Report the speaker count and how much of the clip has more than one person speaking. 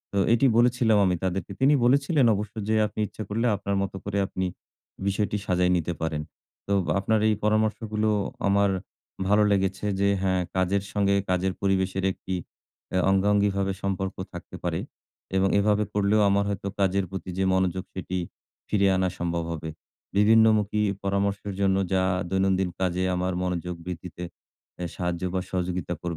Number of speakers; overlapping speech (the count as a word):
one, no overlap